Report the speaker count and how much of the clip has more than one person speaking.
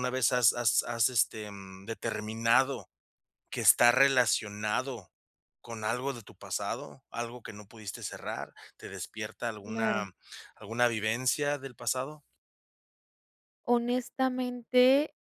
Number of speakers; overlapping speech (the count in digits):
2, about 3%